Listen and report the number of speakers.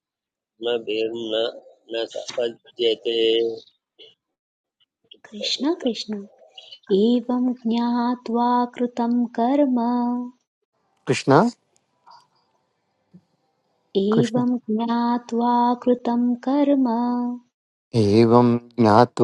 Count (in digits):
3